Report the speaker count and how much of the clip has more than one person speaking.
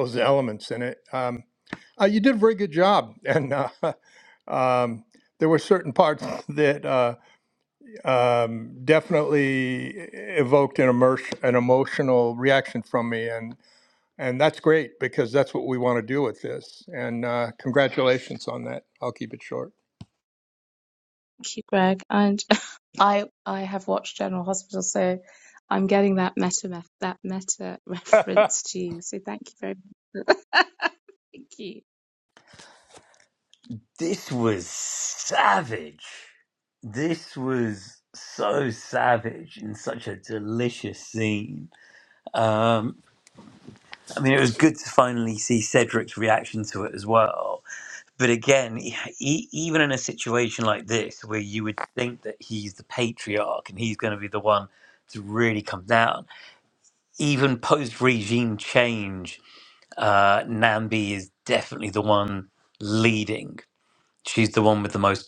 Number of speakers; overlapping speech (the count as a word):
three, about 1%